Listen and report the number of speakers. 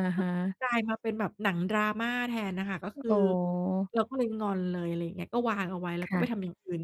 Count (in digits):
2